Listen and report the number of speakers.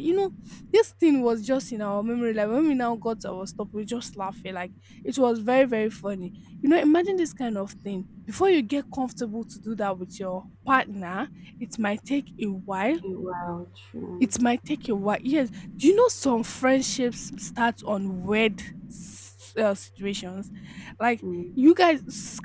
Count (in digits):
2